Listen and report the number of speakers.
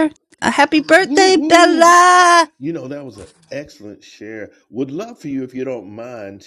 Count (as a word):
two